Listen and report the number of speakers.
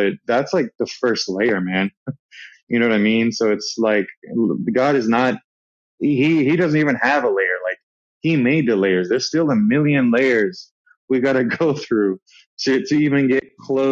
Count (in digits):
1